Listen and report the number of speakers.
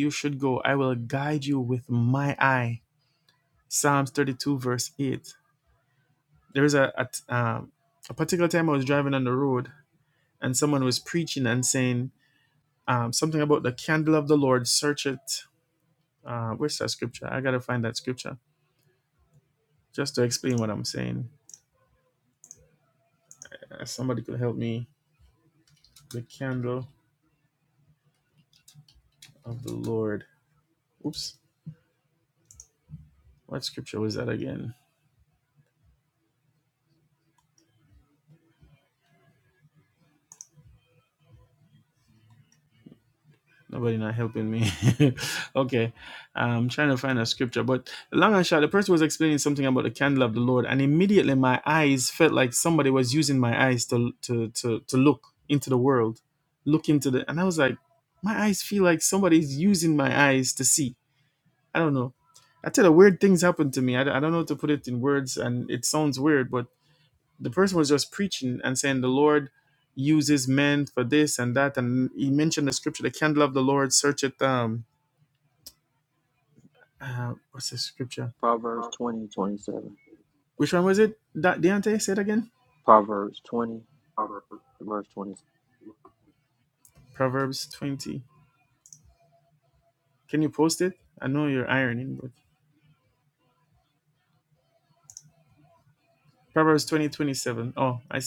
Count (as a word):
two